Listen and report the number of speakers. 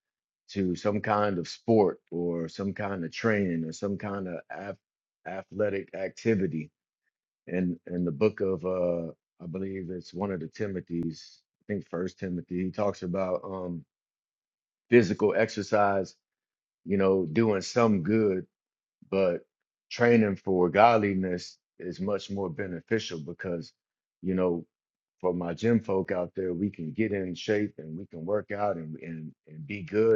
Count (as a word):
one